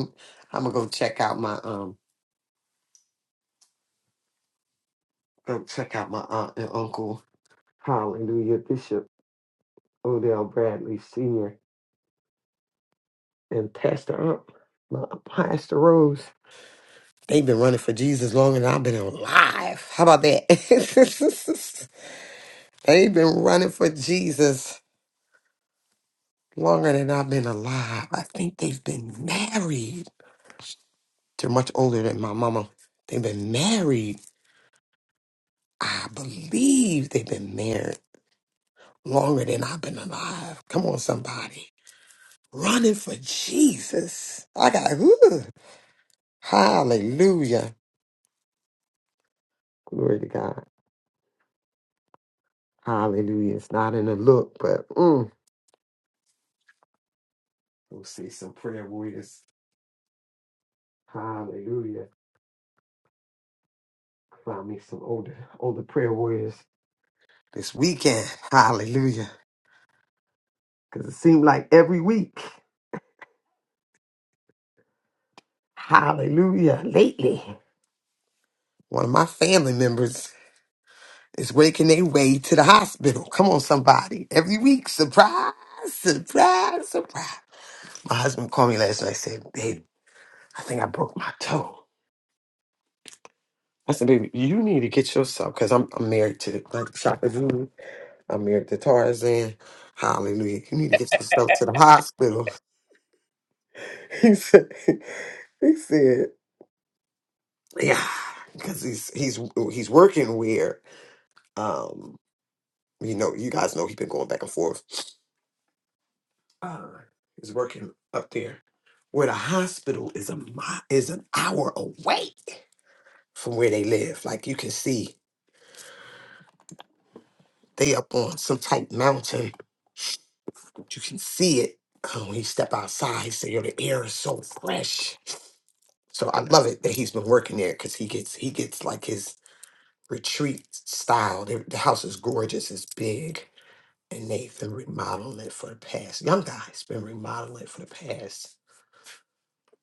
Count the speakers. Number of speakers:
one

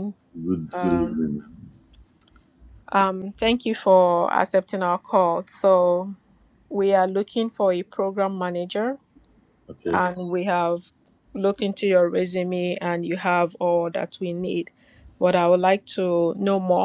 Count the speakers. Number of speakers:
two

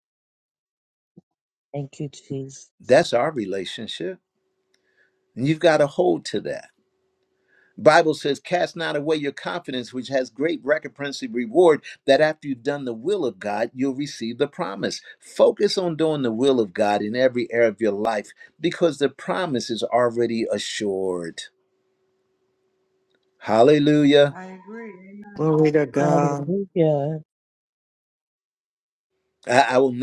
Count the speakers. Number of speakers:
four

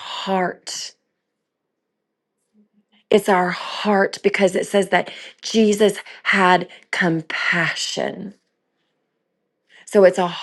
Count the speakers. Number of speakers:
one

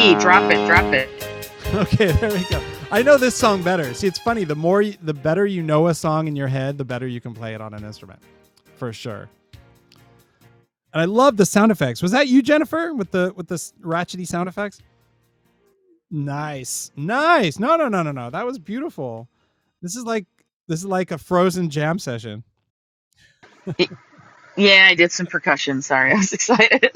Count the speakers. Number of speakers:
two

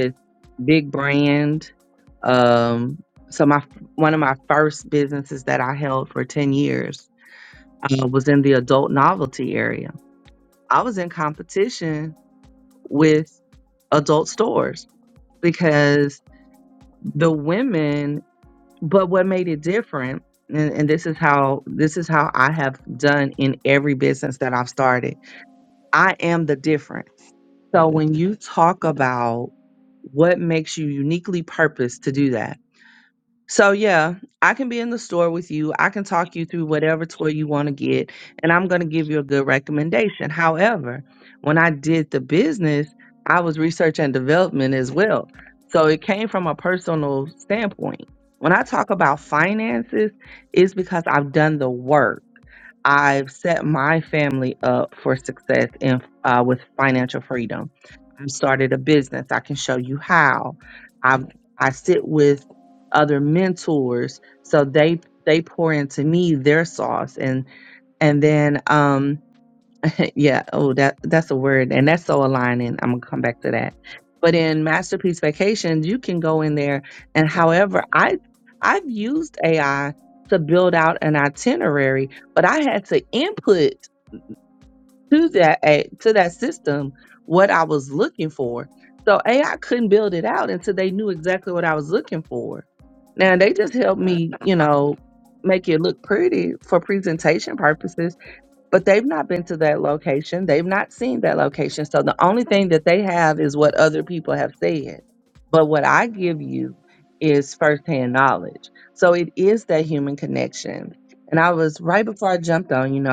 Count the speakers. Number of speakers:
one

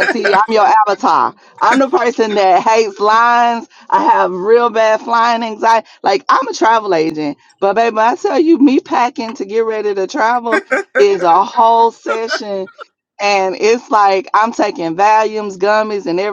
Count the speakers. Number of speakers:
one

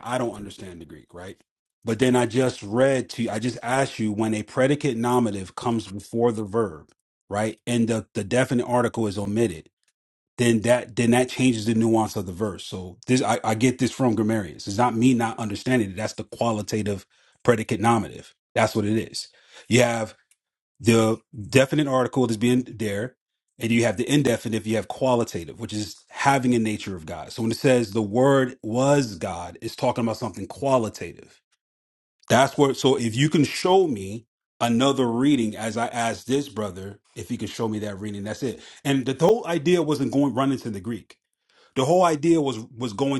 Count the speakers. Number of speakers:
one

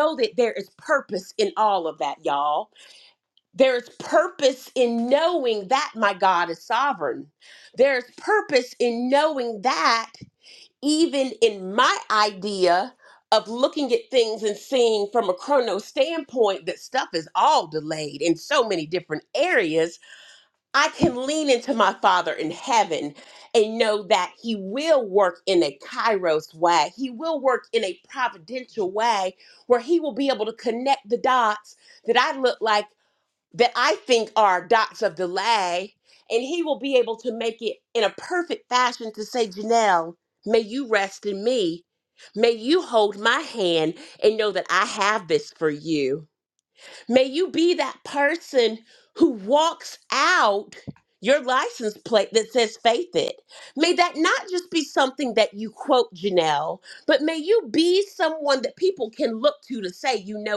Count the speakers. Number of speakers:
one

